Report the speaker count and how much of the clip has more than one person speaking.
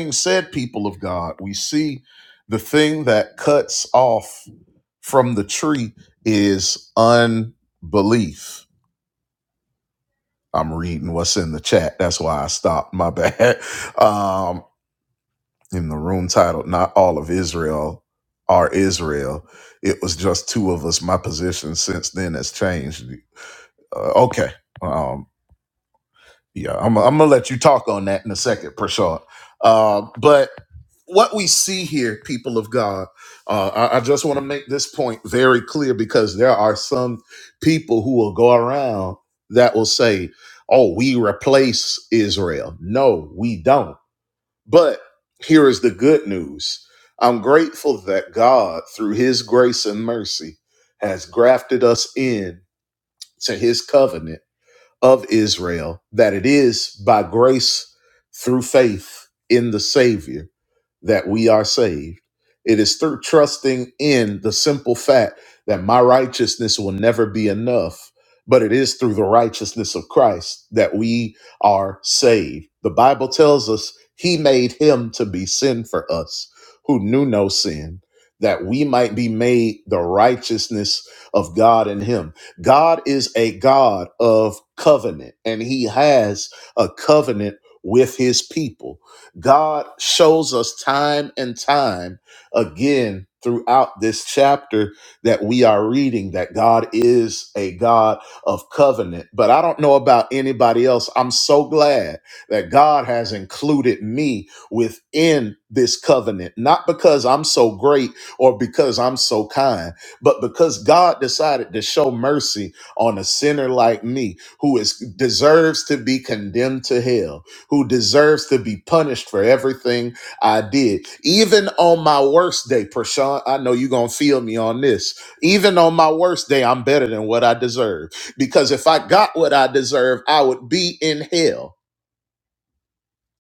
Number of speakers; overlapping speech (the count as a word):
one, no overlap